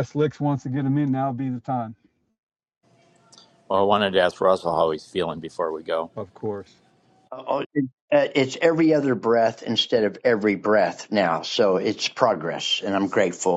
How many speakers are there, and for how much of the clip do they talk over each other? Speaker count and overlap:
three, no overlap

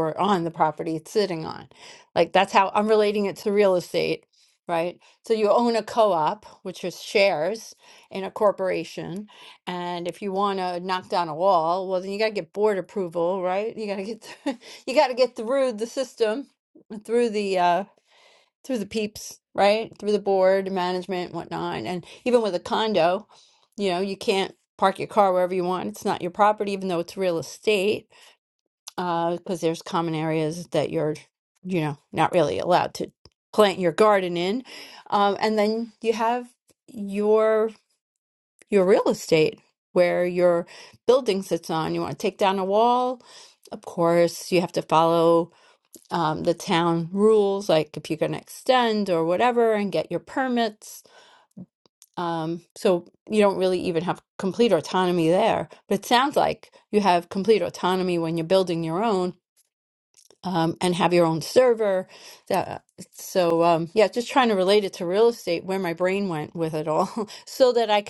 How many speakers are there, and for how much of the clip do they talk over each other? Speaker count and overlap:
one, no overlap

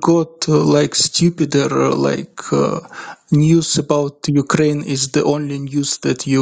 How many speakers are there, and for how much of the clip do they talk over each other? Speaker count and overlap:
one, no overlap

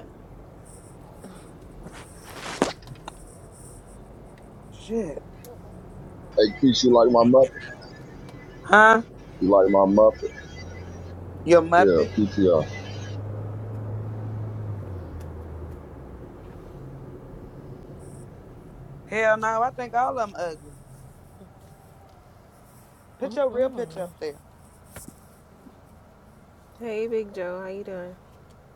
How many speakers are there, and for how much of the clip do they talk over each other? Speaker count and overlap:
three, about 1%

